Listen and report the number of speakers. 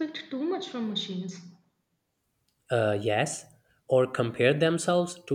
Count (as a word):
two